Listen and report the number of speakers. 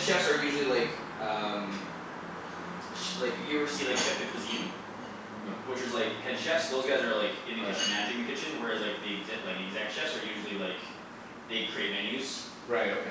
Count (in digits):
2